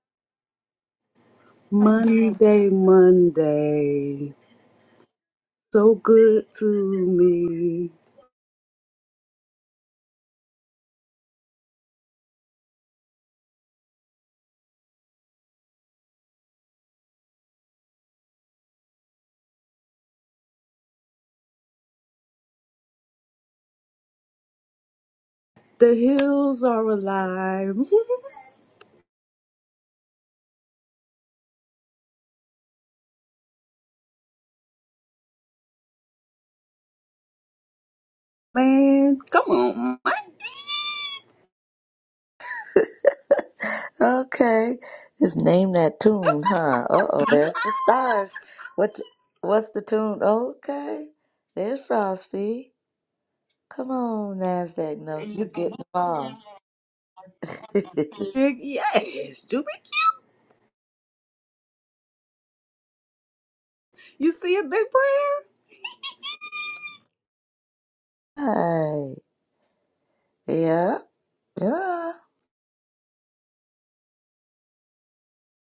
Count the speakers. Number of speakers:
two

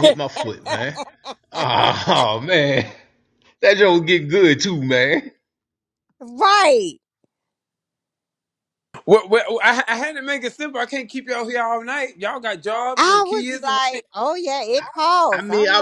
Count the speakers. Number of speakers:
three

